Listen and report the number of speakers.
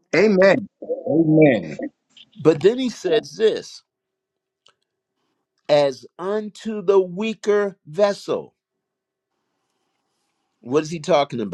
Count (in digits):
2